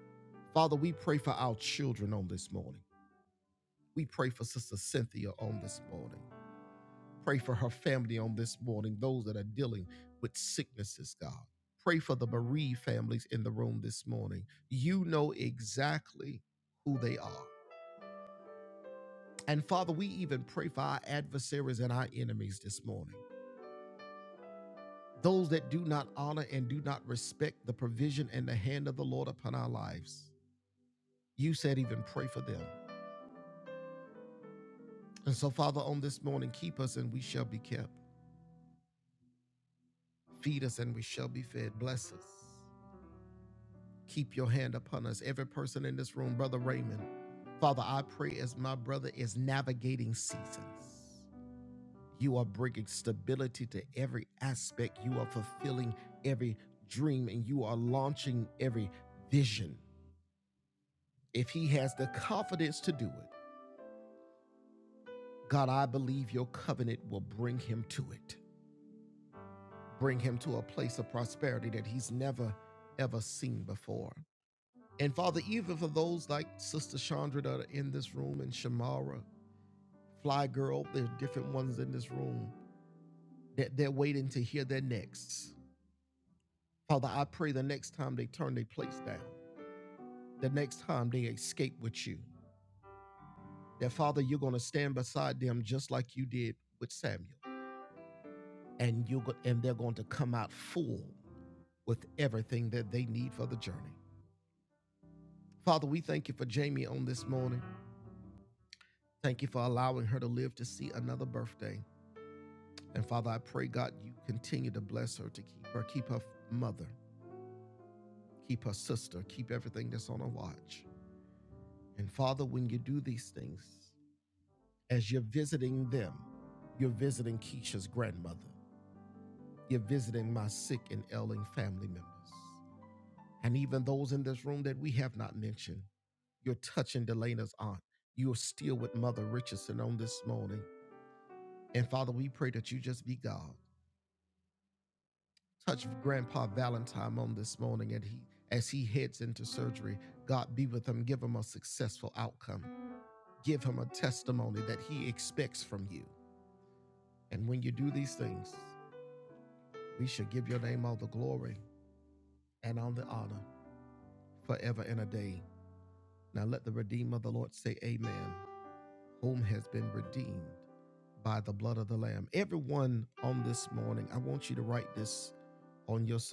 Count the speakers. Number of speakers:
one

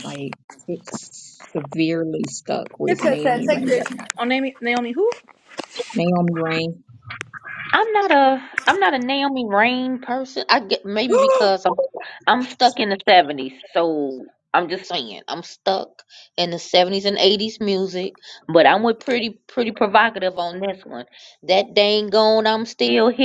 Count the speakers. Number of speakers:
three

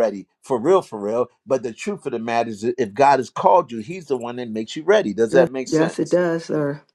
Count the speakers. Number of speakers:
two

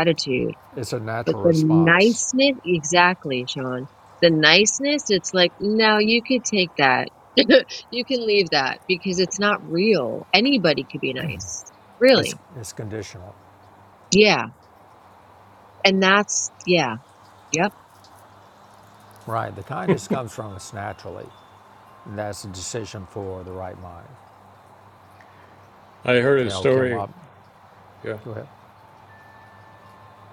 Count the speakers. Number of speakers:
three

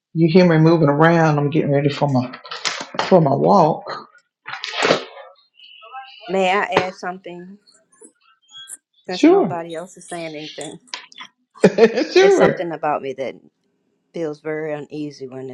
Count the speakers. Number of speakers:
two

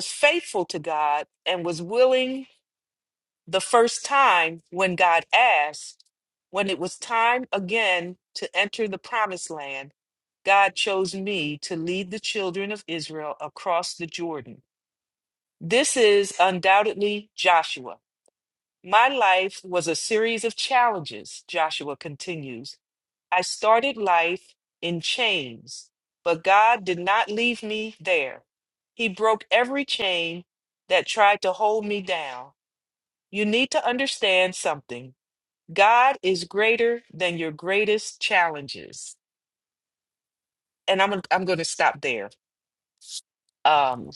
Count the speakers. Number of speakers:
one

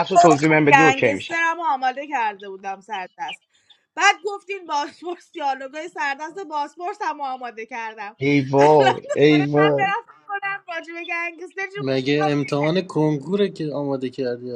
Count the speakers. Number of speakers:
three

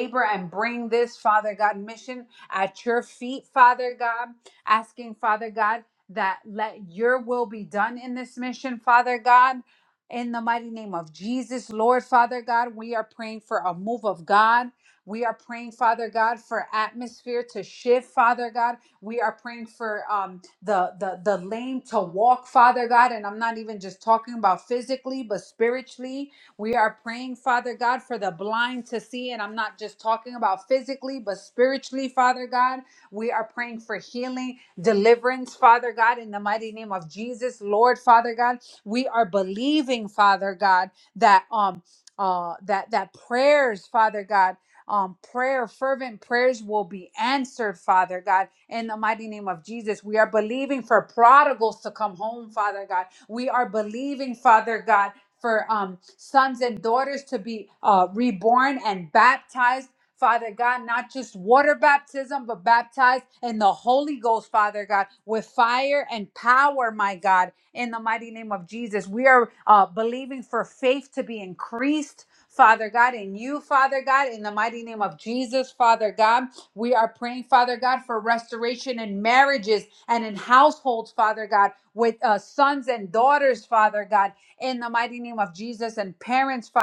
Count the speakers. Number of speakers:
one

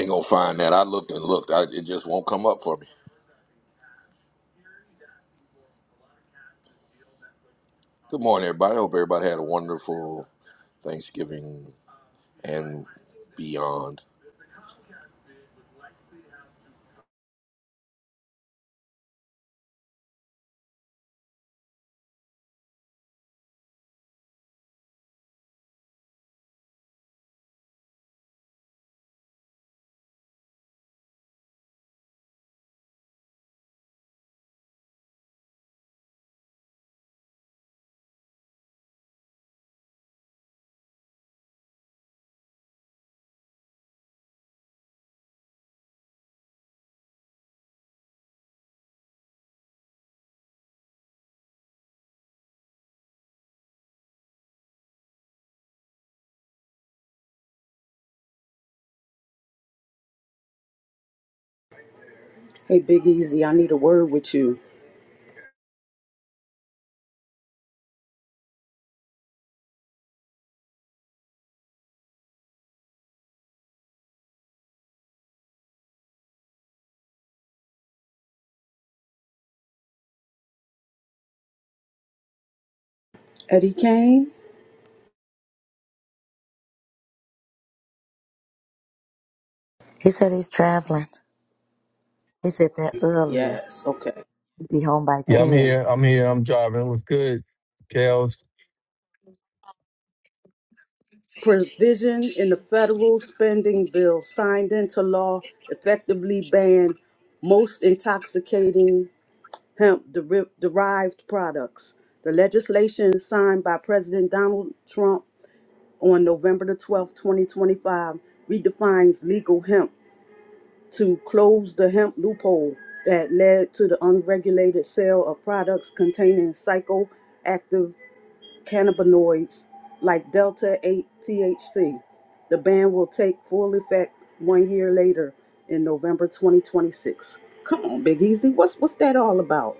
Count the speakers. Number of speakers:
four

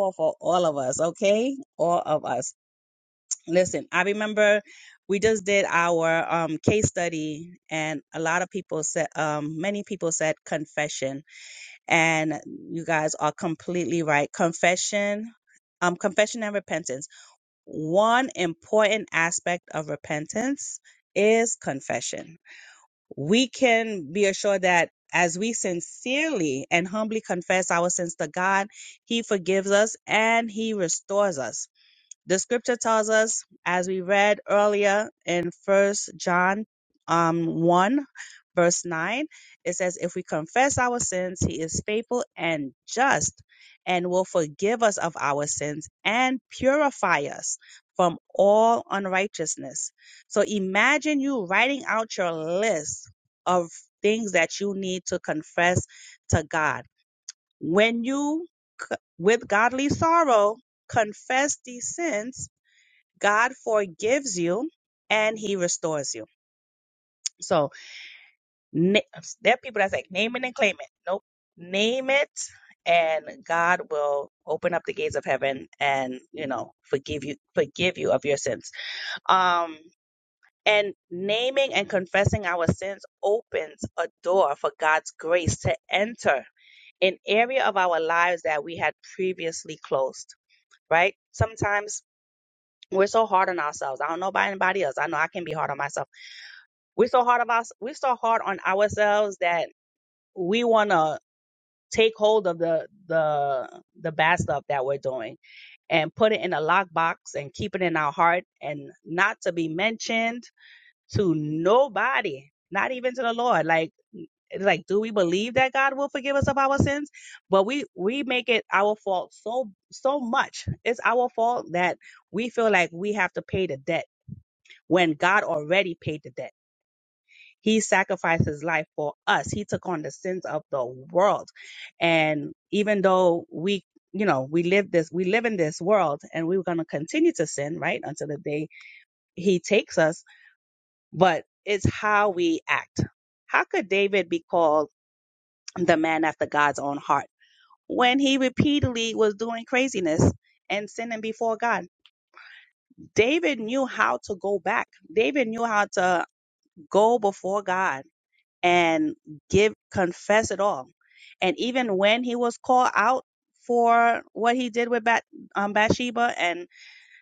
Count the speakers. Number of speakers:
one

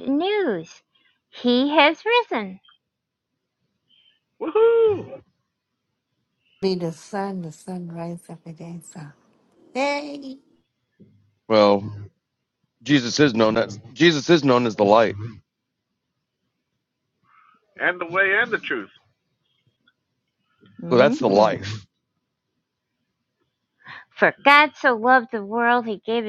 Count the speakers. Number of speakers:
four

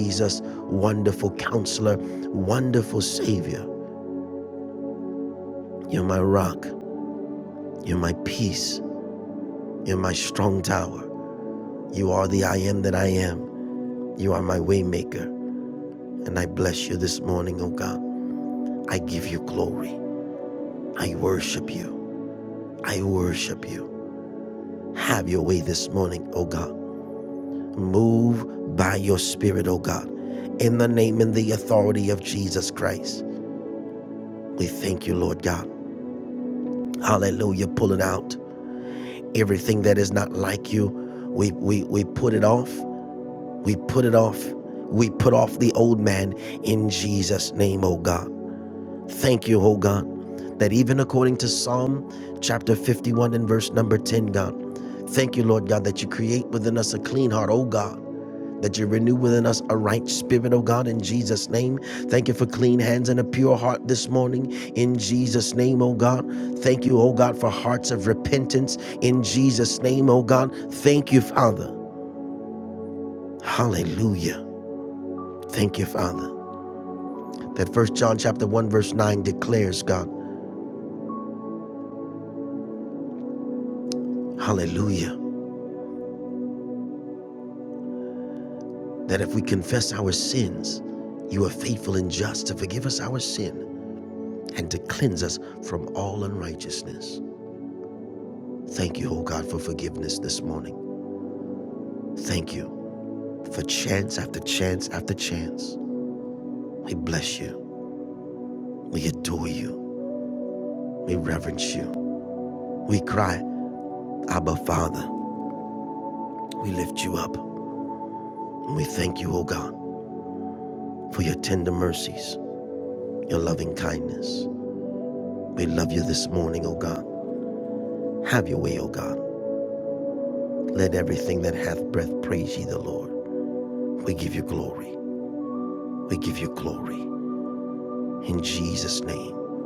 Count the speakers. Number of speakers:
one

